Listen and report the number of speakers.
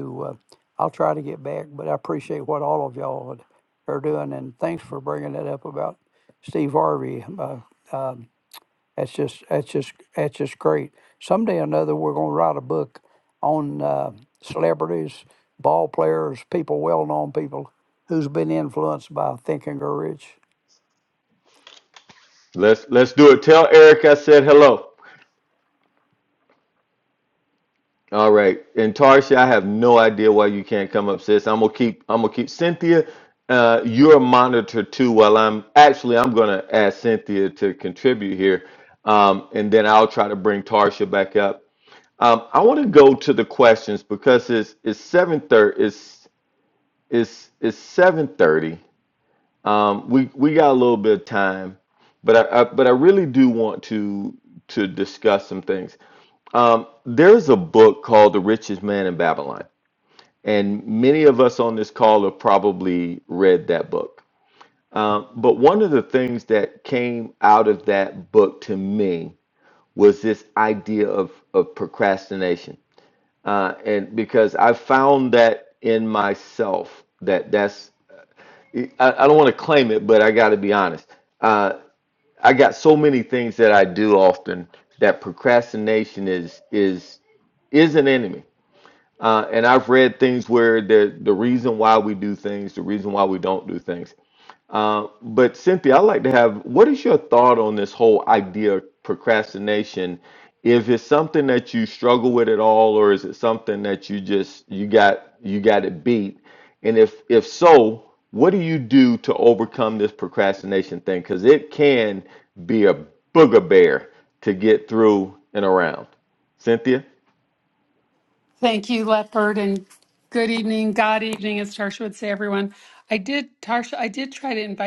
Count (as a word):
three